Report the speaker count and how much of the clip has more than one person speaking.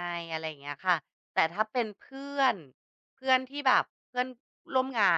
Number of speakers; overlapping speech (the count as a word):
one, no overlap